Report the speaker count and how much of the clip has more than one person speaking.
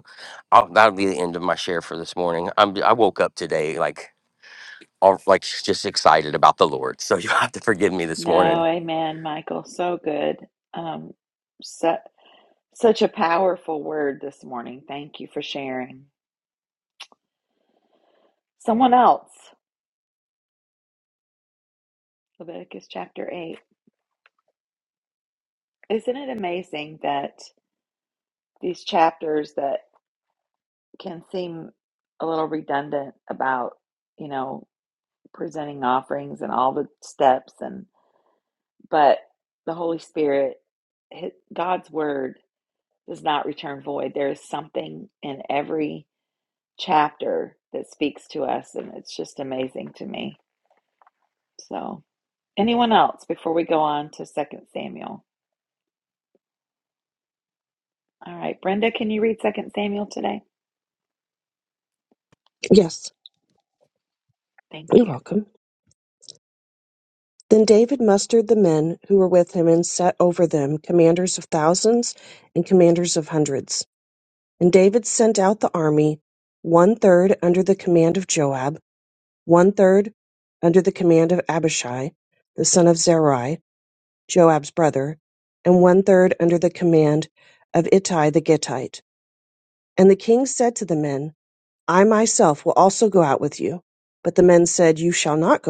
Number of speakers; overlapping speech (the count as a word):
three, about 1%